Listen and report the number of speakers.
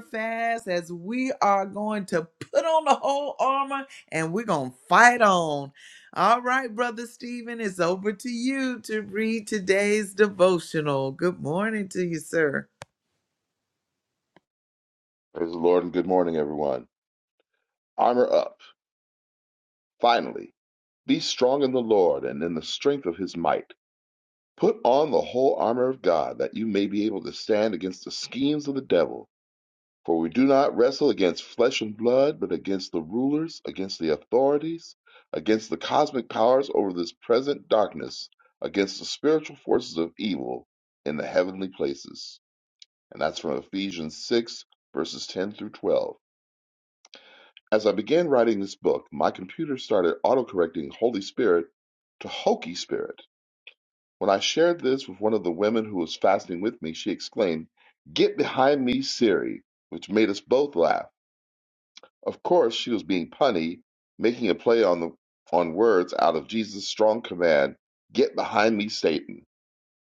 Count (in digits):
2